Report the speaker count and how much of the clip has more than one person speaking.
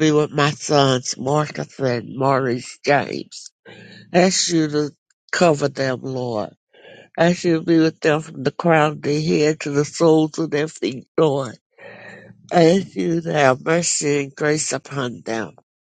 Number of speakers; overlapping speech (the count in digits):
1, no overlap